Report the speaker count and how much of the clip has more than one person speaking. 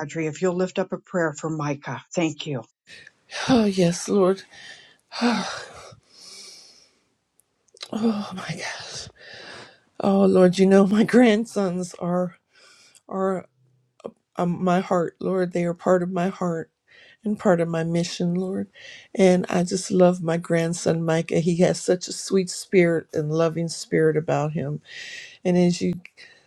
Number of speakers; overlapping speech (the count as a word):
two, no overlap